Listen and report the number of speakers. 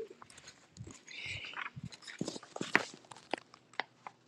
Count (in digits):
0